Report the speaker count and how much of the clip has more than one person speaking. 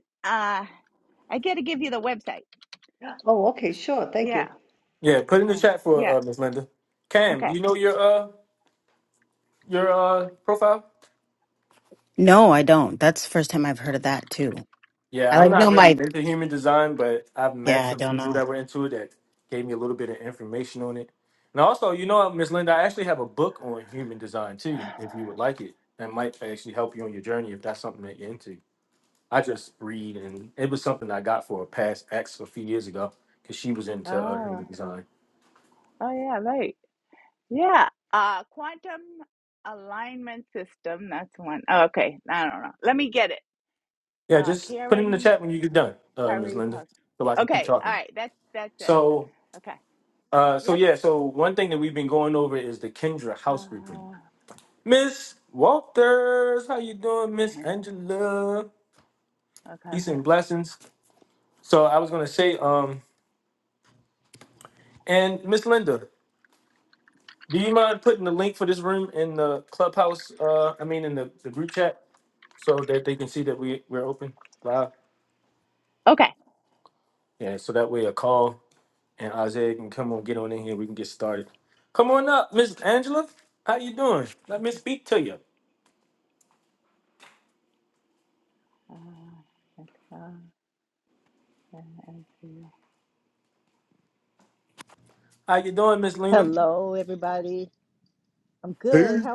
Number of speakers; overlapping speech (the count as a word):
five, about 7%